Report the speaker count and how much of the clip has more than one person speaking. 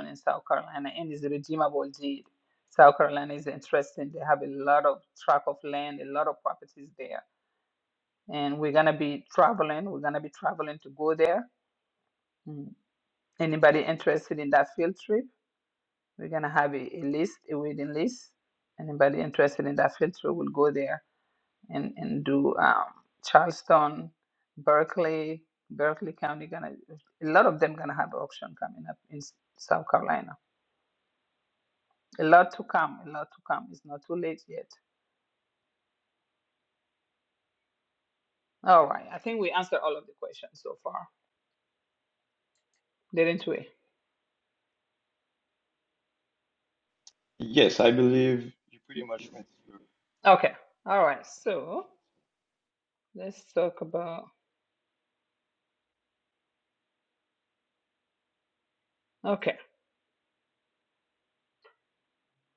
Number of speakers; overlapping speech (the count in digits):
2, no overlap